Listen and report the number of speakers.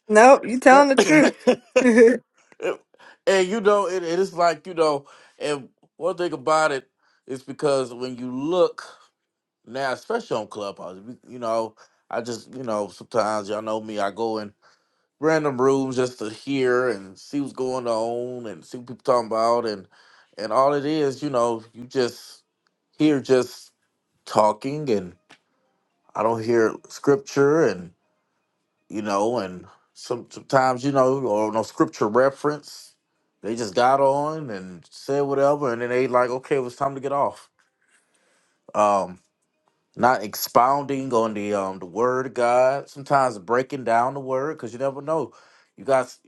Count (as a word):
two